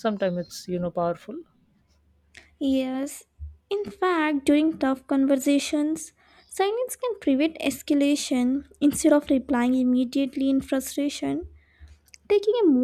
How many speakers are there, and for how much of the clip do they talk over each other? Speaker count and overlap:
two, no overlap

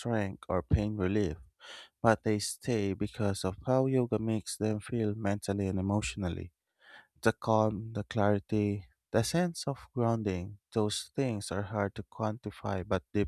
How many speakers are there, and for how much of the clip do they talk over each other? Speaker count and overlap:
one, no overlap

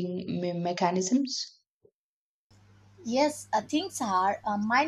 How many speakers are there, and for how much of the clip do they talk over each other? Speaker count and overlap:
two, no overlap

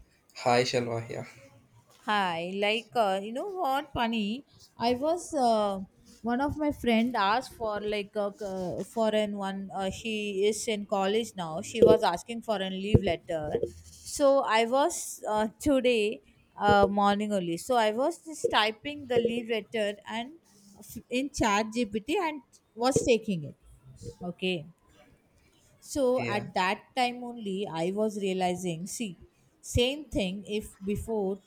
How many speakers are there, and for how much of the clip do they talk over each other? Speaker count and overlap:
two, about 1%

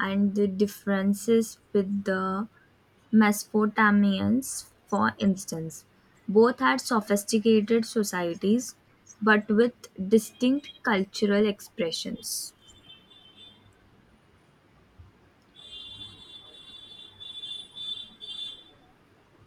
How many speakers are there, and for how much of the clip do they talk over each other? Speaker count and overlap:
one, no overlap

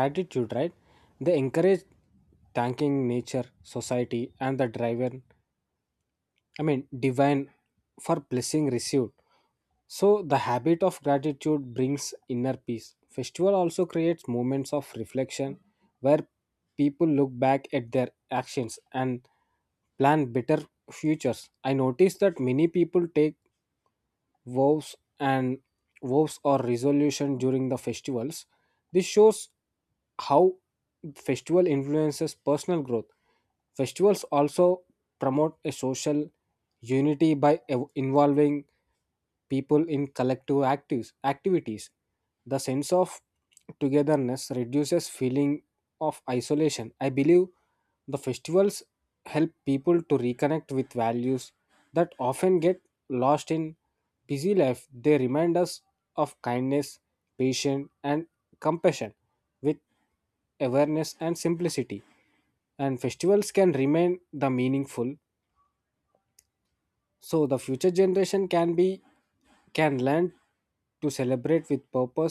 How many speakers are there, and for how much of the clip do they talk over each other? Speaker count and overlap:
one, no overlap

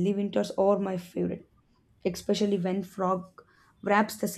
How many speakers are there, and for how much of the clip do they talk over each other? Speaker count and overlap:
one, no overlap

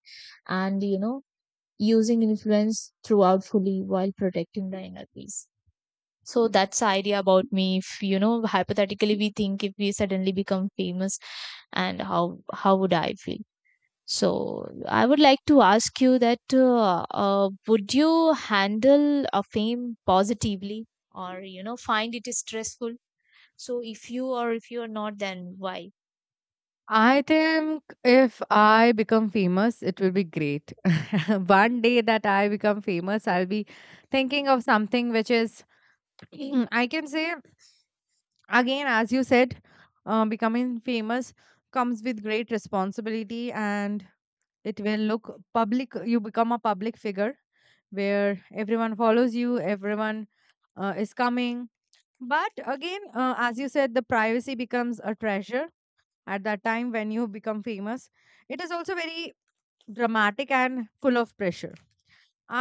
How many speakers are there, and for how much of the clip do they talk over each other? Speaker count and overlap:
two, no overlap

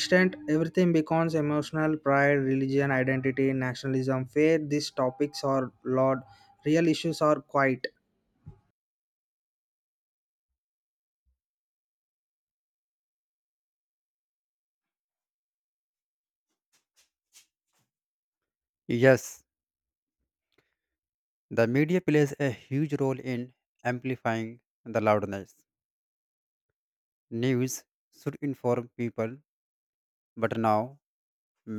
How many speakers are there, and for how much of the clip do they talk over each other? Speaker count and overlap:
two, no overlap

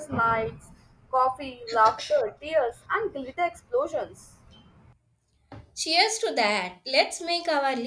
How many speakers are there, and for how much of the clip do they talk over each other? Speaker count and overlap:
two, no overlap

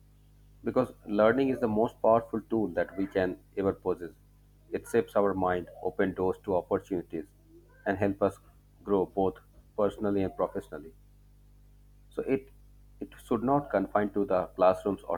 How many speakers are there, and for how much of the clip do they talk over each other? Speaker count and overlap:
one, no overlap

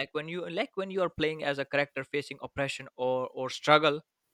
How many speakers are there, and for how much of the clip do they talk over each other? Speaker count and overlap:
one, no overlap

